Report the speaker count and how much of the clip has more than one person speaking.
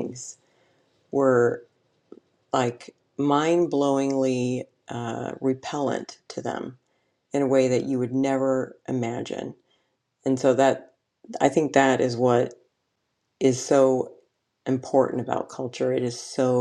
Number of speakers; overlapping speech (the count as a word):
one, no overlap